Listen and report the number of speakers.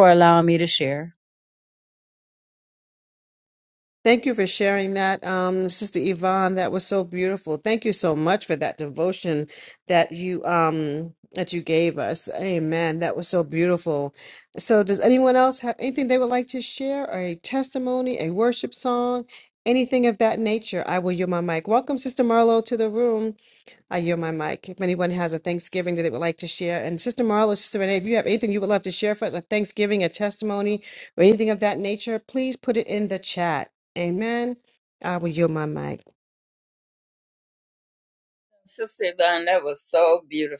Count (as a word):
three